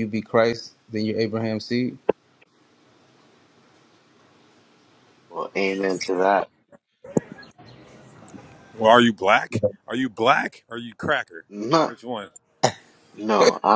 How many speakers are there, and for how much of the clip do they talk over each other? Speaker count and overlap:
three, under 1%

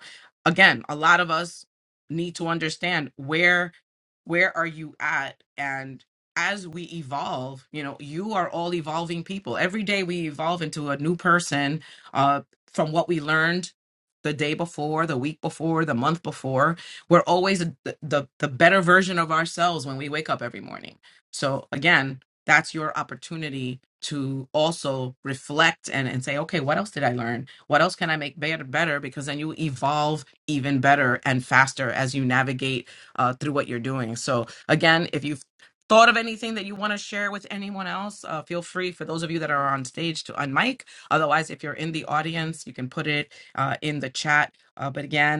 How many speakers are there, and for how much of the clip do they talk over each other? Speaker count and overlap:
one, no overlap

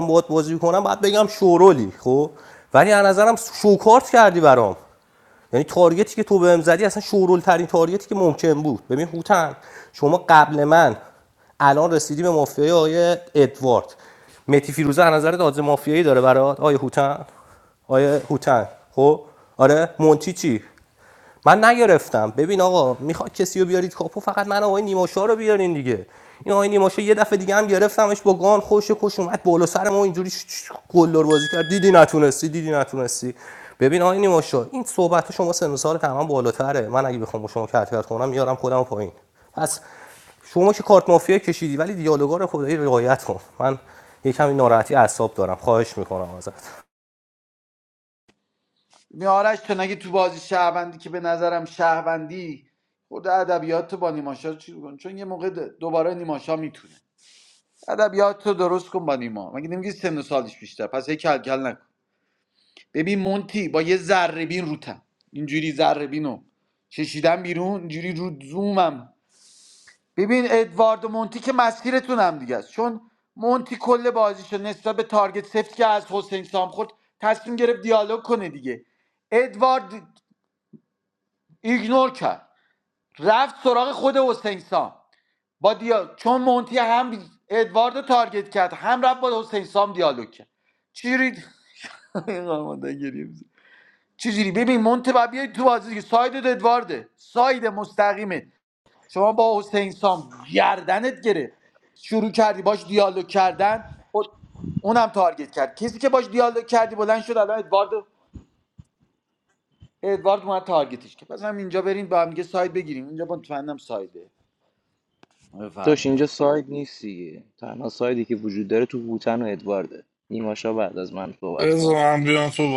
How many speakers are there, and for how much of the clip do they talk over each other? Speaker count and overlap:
four, about 1%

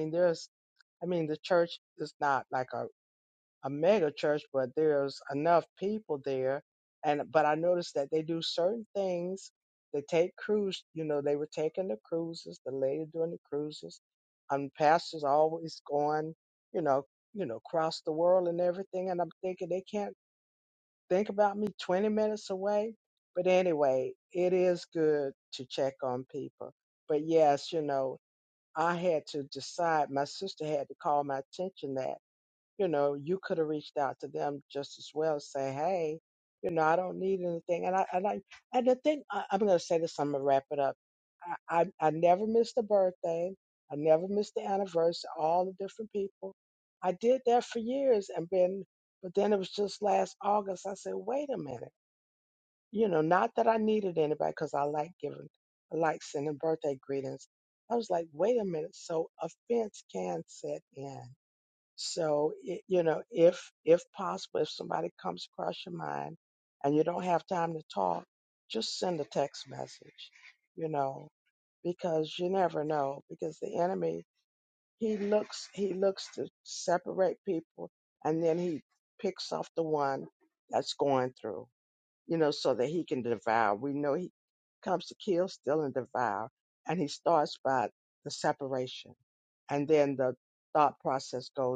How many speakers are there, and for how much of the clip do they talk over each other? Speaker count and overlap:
one, no overlap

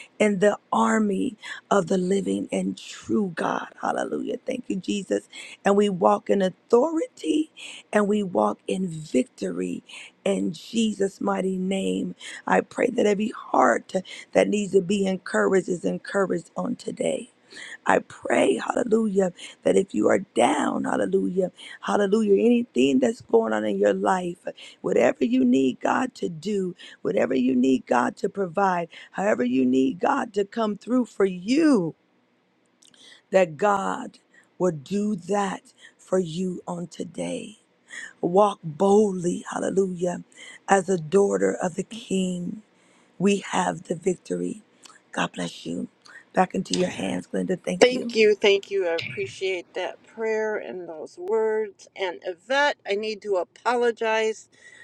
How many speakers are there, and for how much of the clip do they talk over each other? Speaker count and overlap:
two, about 1%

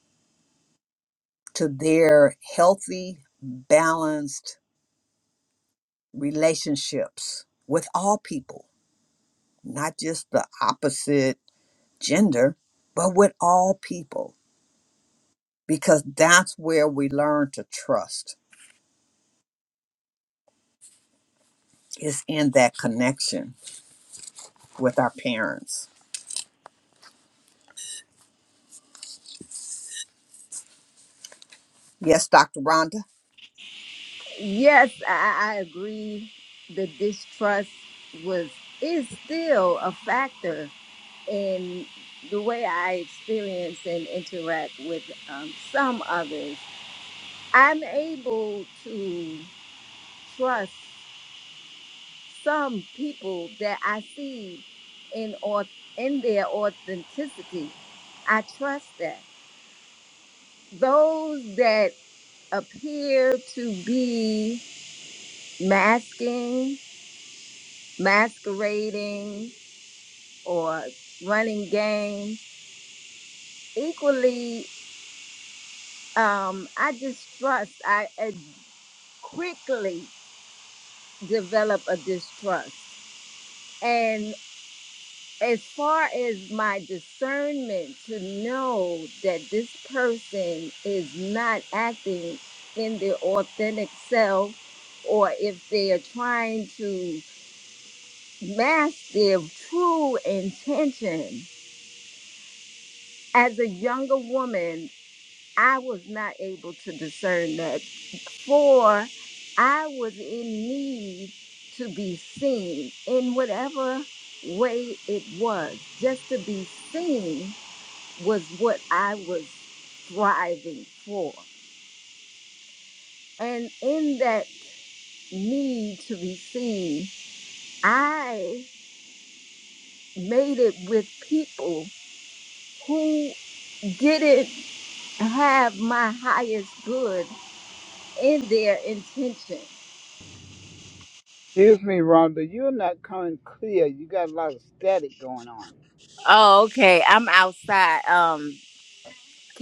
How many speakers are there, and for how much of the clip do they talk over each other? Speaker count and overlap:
three, no overlap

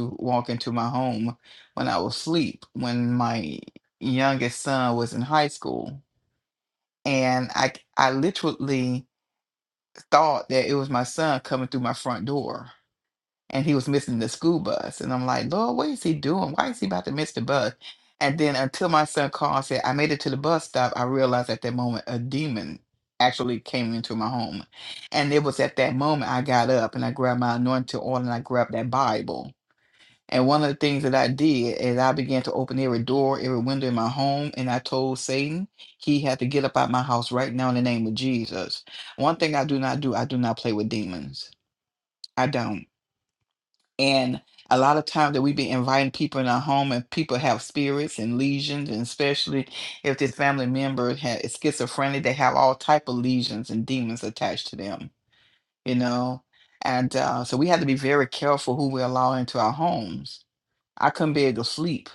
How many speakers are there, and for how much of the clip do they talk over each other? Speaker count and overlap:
one, no overlap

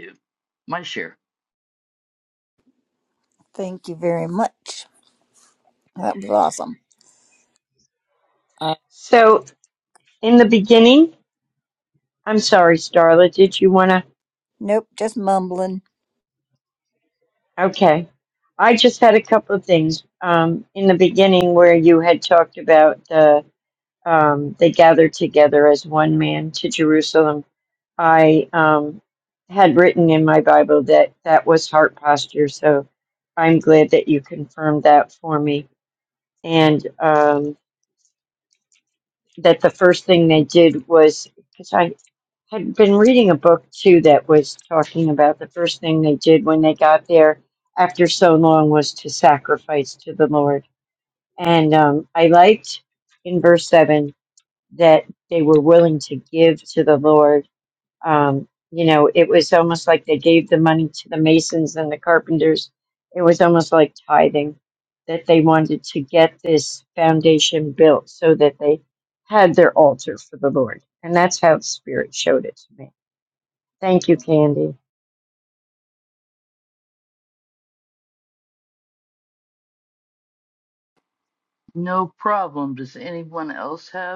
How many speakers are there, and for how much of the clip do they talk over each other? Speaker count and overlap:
three, no overlap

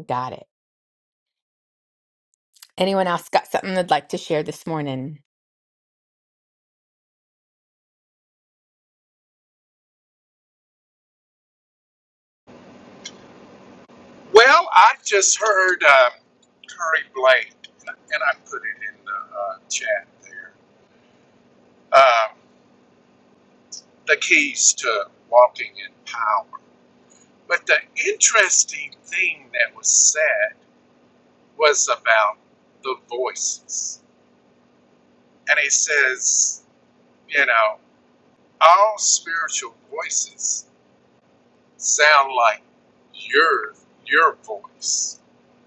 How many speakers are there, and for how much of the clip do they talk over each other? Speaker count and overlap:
two, no overlap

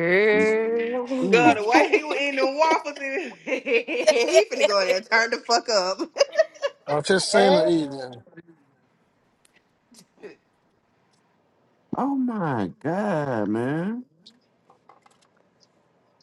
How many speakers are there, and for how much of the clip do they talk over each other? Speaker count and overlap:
four, about 2%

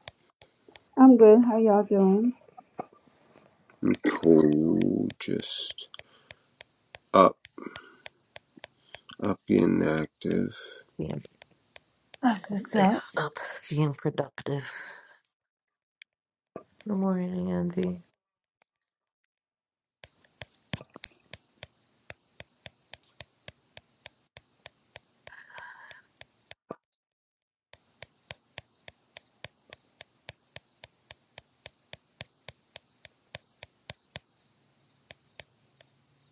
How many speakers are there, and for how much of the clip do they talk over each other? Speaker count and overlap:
three, no overlap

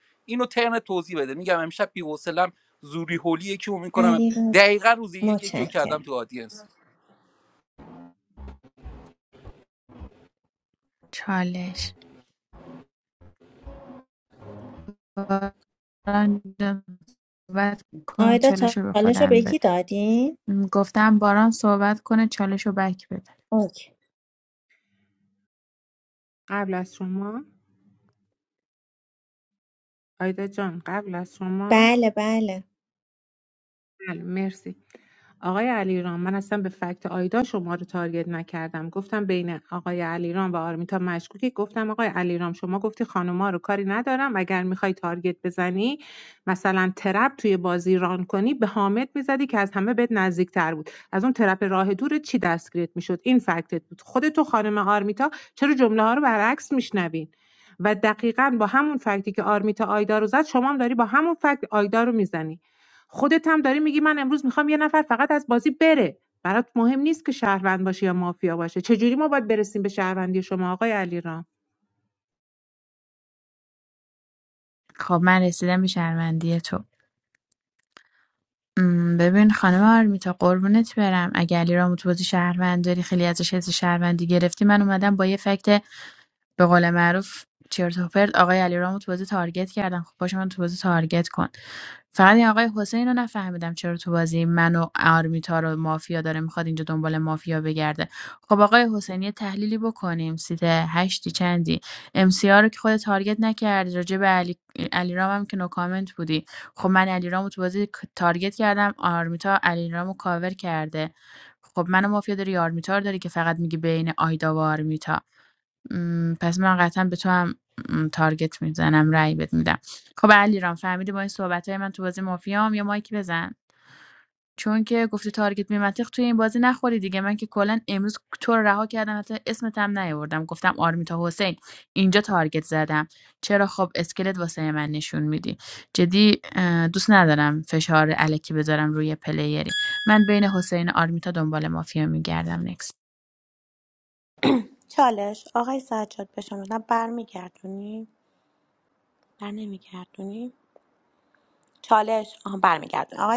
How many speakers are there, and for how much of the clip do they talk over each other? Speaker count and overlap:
five, about 2%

